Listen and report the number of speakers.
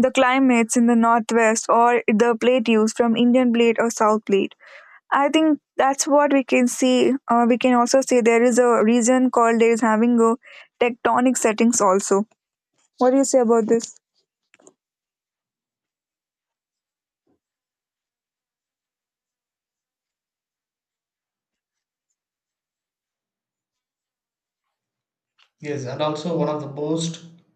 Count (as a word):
two